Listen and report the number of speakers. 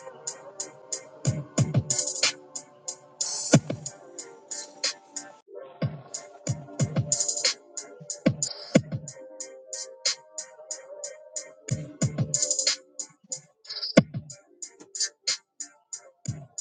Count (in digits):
0